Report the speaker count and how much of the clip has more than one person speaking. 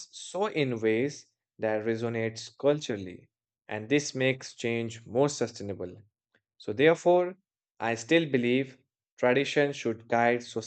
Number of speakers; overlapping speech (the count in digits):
1, no overlap